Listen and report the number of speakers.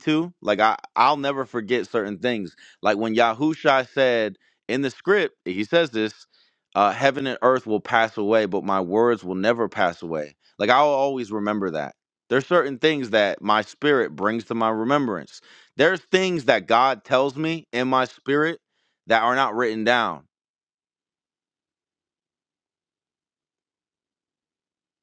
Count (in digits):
1